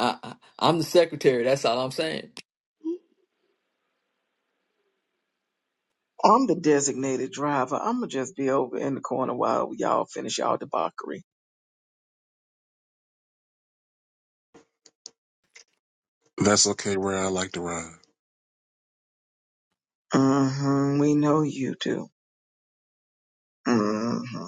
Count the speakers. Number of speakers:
three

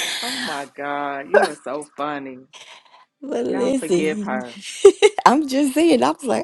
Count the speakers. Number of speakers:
two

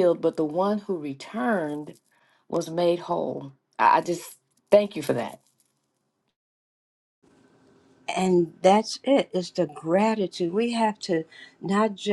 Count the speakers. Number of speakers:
two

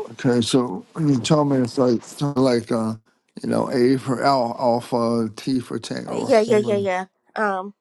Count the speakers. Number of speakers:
two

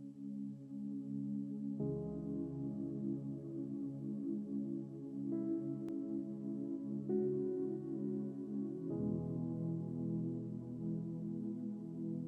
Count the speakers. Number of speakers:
zero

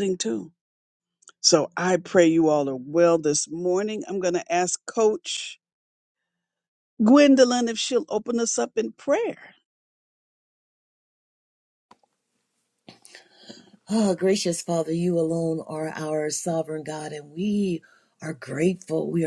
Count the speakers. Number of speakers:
two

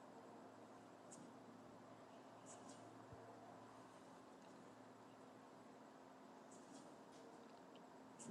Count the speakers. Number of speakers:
zero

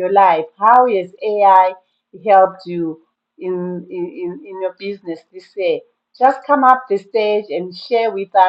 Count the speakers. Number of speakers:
one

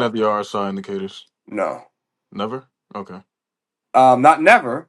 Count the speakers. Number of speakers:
two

